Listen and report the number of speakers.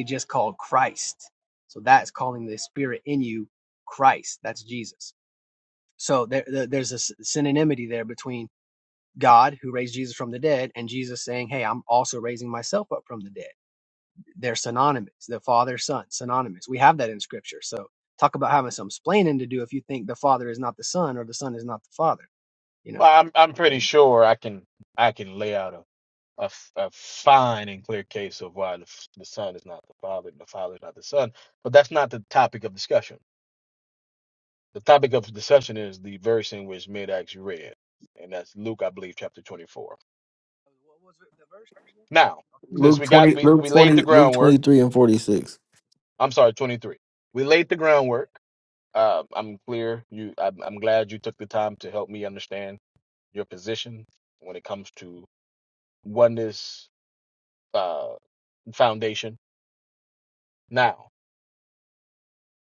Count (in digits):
3